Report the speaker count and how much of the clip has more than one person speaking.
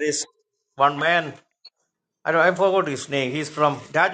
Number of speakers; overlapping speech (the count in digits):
1, no overlap